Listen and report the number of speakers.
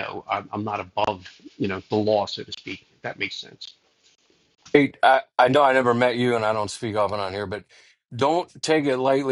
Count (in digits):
2